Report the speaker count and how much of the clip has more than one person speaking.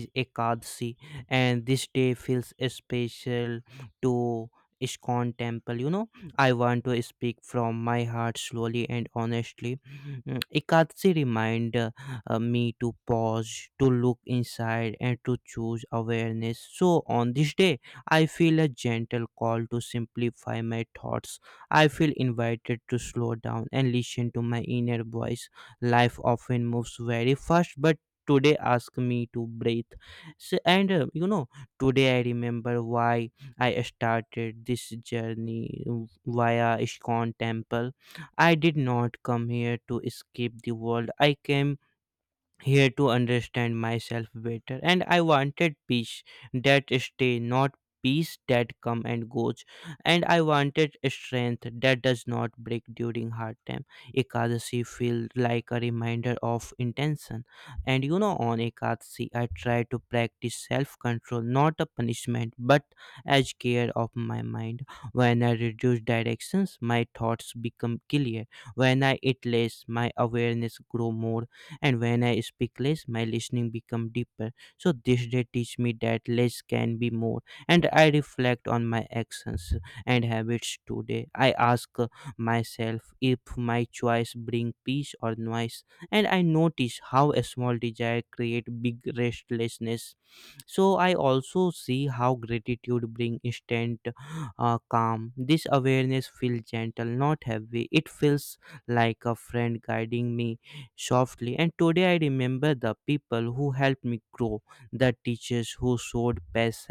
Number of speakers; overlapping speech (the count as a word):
one, no overlap